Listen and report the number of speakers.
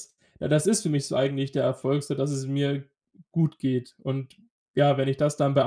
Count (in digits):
1